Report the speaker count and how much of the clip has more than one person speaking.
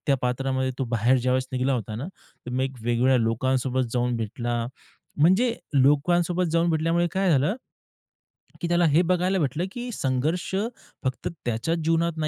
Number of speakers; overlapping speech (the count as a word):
one, no overlap